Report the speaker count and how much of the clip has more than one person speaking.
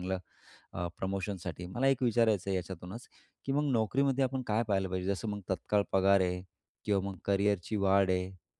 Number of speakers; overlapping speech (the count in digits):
1, no overlap